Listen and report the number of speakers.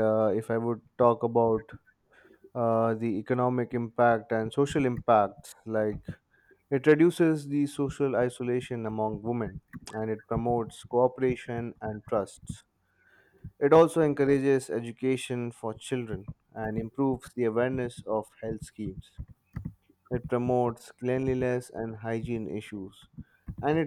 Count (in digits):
1